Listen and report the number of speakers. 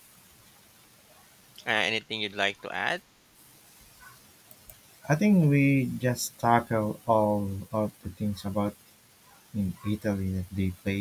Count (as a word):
two